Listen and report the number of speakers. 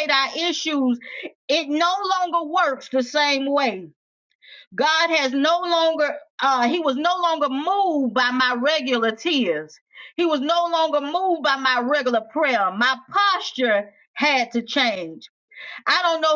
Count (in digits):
1